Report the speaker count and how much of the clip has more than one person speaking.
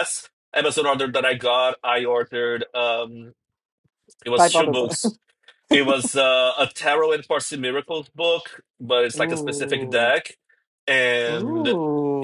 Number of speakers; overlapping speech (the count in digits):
2, about 13%